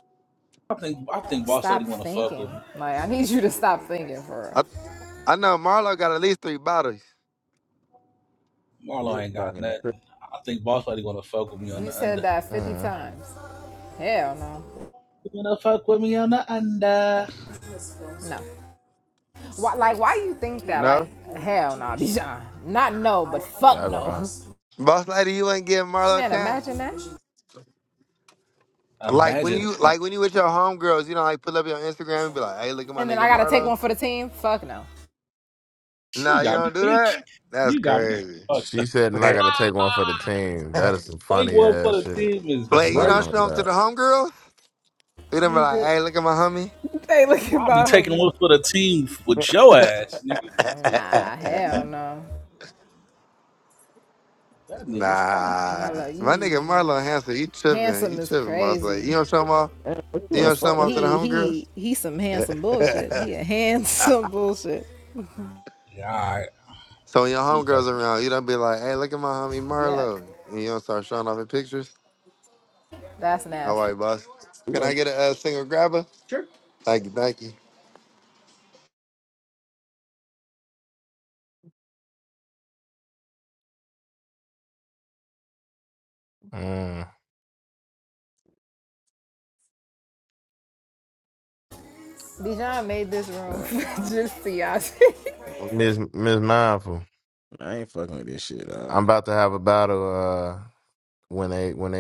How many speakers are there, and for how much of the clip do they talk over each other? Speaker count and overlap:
5, about 18%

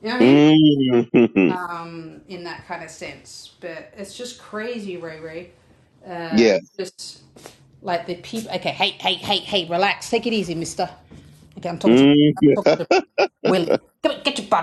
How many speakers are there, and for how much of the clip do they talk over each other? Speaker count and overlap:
2, about 10%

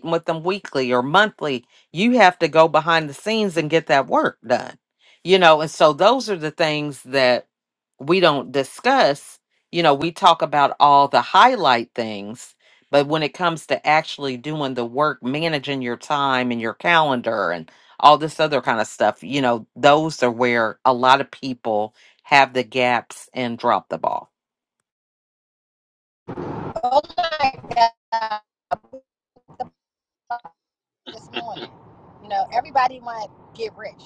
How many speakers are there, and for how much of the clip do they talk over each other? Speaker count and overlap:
2, no overlap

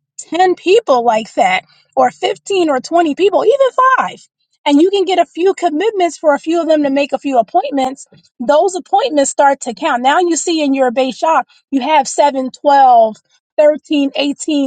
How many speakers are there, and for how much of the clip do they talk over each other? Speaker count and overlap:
1, no overlap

